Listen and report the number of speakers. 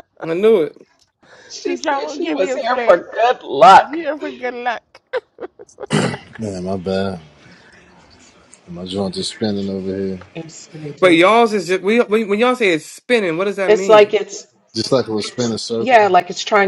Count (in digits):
4